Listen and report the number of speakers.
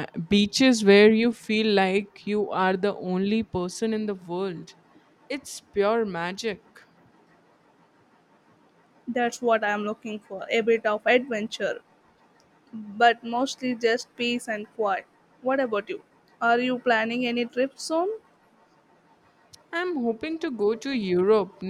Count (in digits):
2